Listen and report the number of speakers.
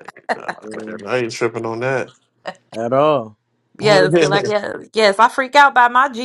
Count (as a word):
three